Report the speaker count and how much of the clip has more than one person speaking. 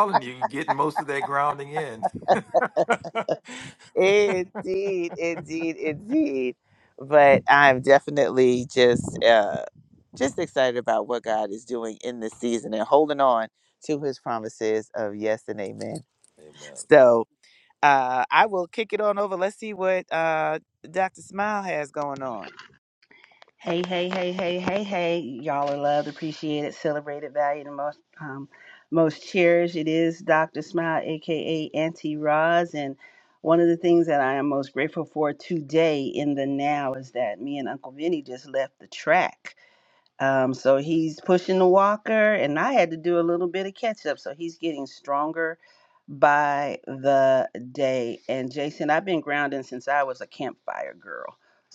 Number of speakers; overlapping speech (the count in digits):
3, no overlap